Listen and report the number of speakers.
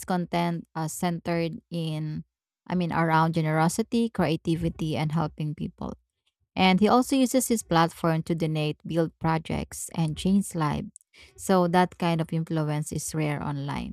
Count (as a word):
one